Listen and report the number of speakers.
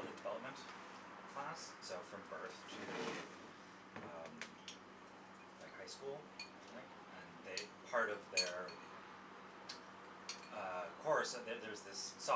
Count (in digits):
1